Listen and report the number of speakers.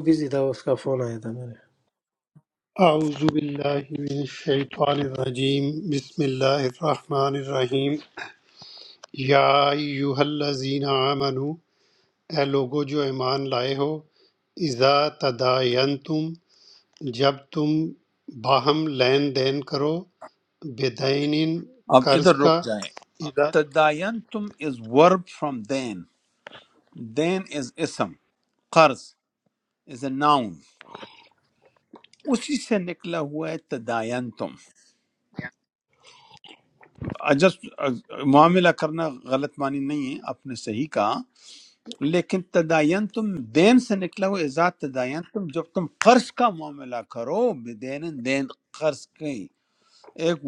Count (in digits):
3